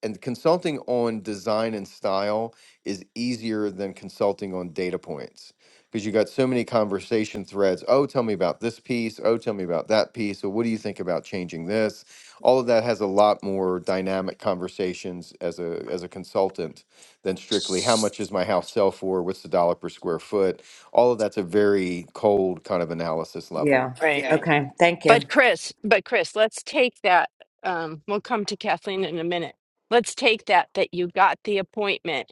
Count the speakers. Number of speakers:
three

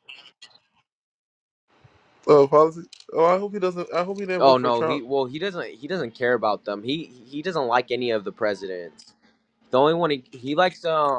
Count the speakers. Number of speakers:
two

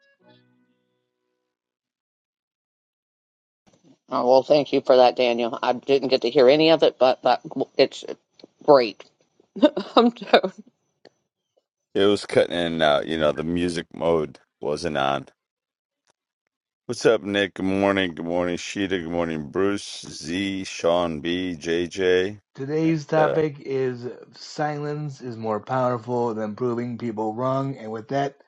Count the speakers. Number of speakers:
three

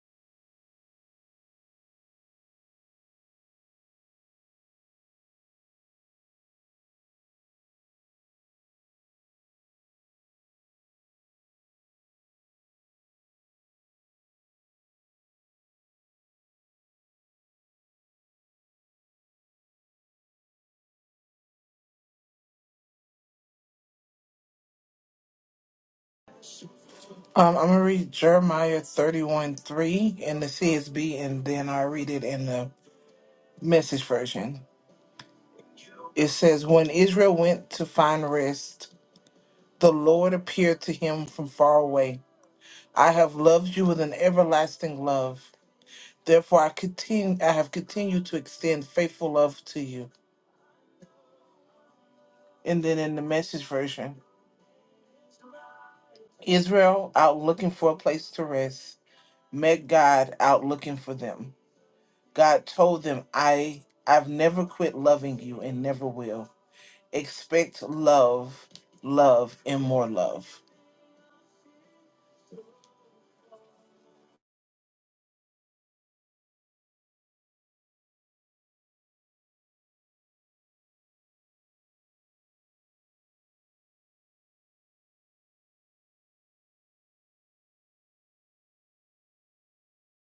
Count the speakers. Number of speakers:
one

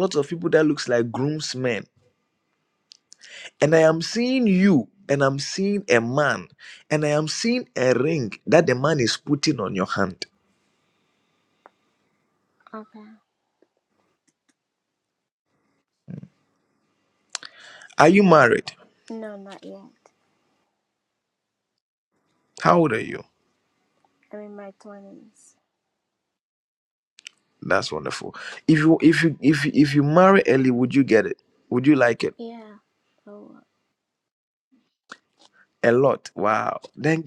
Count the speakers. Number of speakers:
two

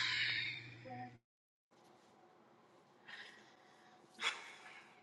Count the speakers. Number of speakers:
zero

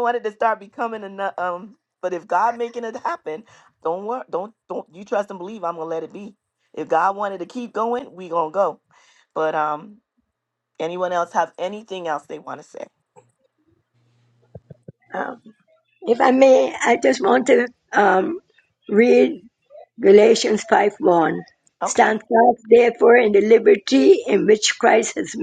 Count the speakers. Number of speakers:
two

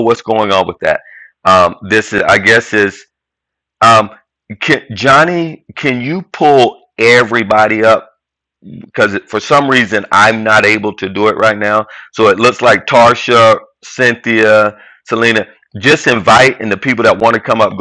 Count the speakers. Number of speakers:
one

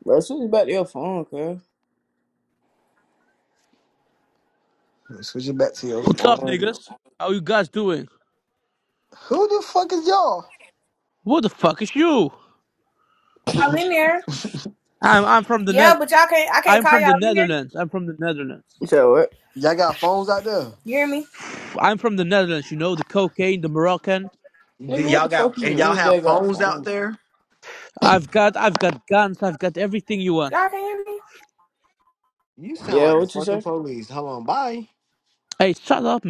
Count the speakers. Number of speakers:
four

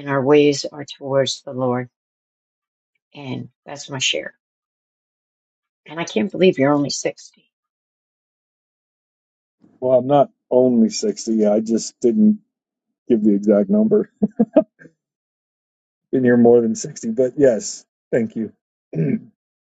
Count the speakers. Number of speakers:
two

